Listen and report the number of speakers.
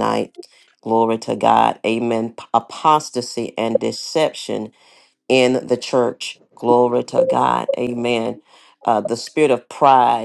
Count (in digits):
1